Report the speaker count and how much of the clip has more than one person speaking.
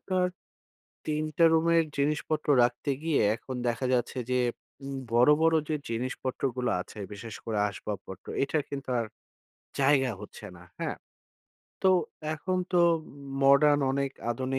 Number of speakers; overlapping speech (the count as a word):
one, no overlap